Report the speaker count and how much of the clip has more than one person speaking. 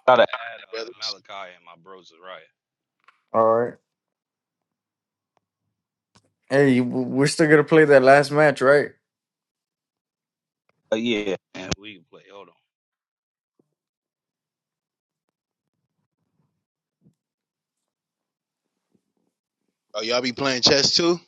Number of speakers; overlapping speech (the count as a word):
three, about 1%